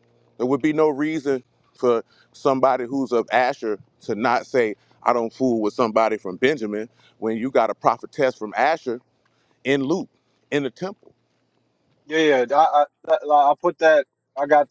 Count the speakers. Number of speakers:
two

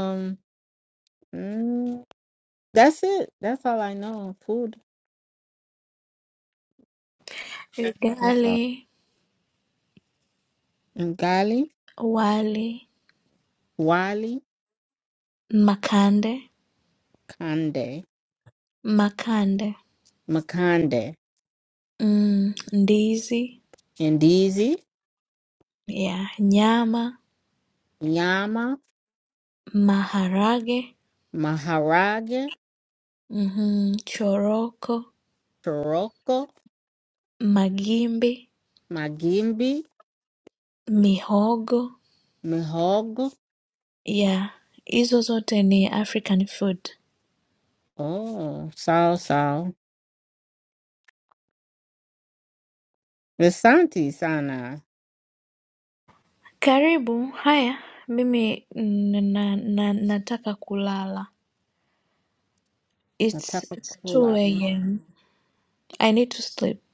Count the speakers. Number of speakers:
two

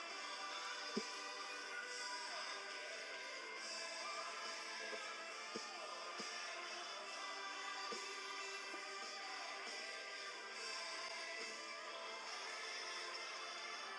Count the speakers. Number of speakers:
zero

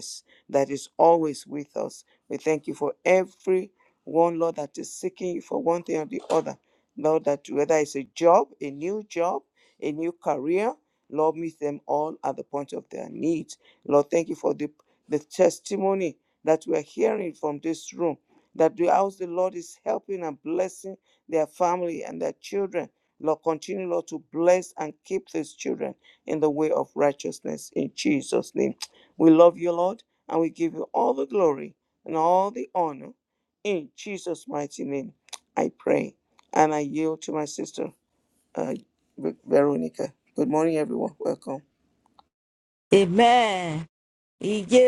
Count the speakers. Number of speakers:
two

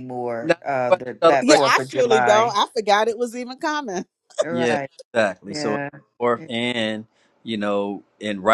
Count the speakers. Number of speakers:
three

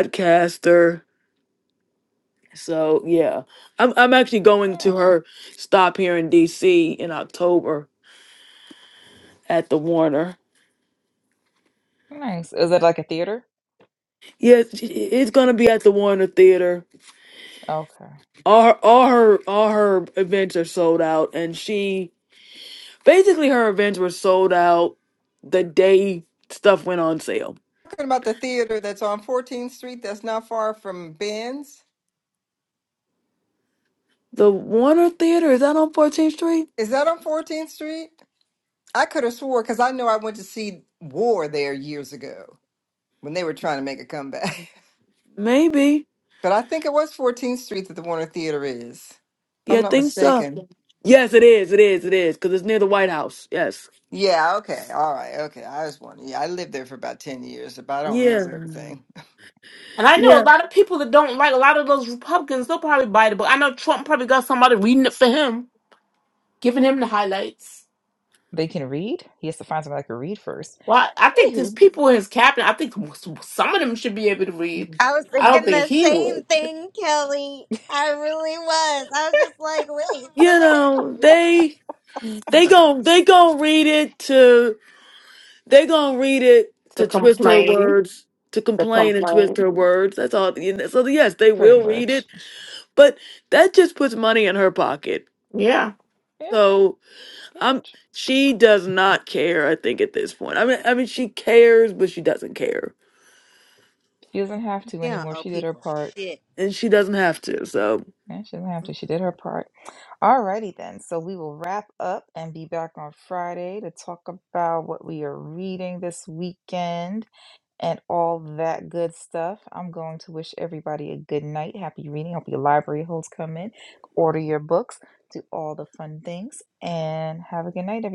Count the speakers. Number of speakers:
five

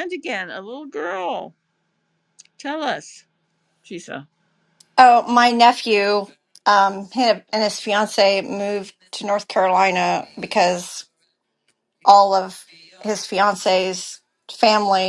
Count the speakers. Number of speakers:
two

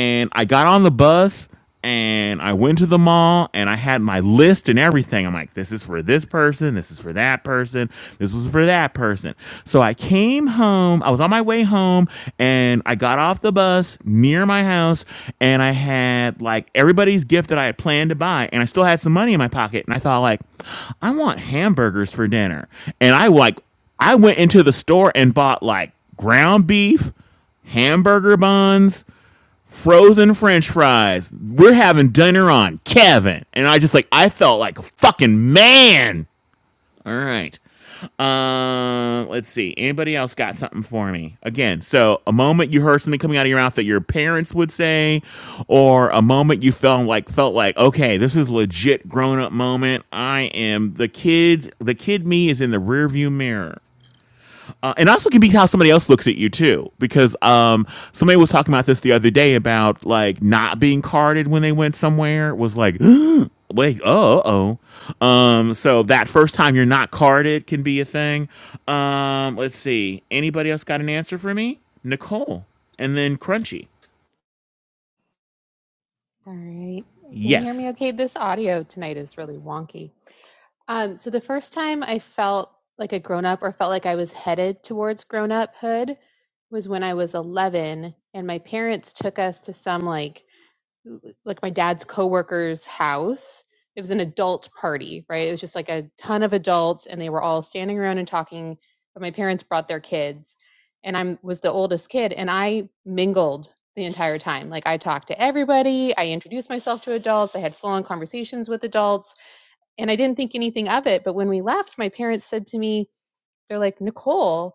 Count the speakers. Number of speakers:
two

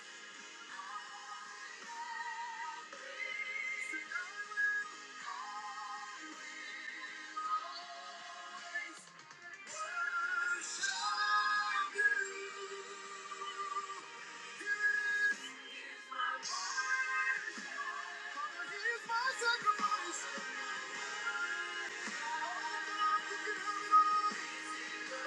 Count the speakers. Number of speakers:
zero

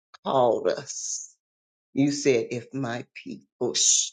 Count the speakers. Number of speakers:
one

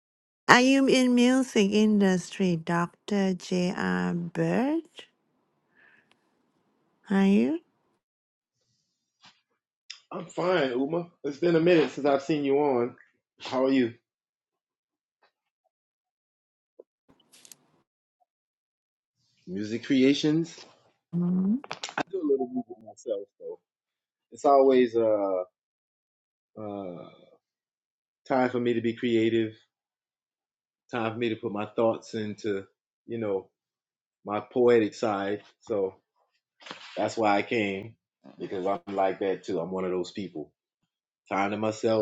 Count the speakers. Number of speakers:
two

